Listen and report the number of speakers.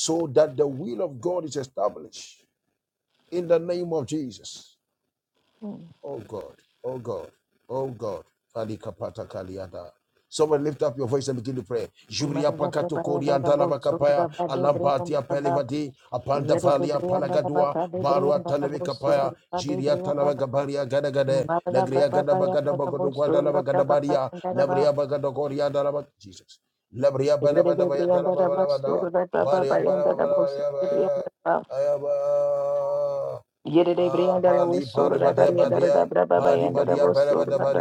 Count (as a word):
two